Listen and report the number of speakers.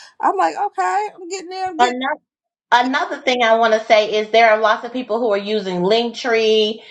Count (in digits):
2